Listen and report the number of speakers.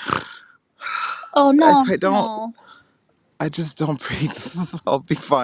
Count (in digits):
2